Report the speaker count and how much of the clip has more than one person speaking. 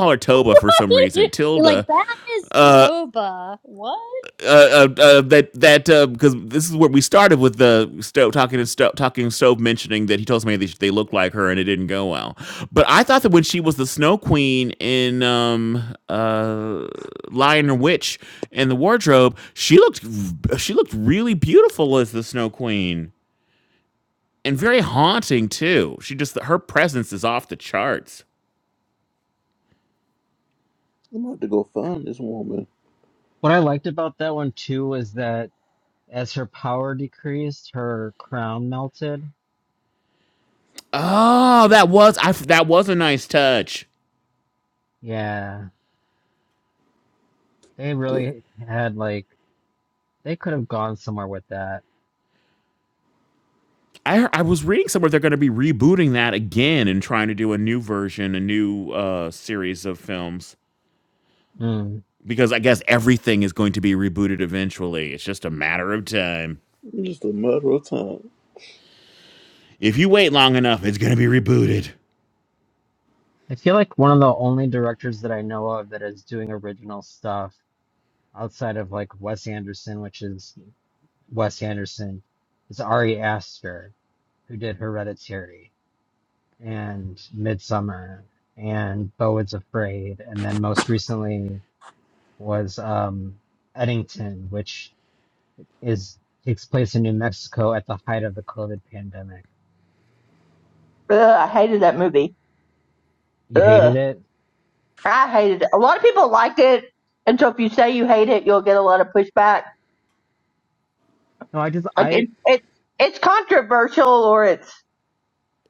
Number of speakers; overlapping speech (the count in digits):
5, about 1%